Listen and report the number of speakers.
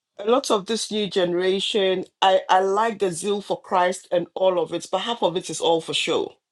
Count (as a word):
one